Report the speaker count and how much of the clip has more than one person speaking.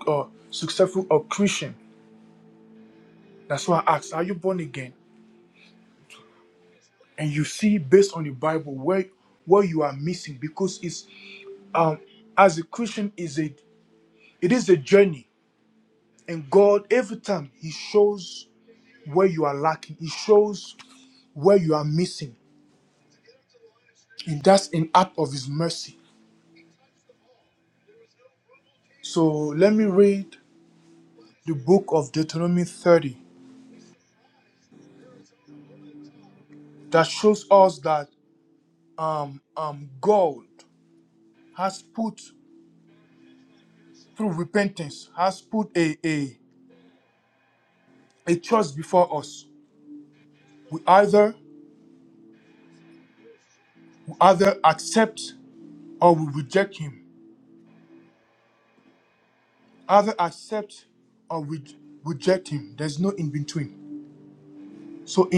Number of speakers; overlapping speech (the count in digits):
1, no overlap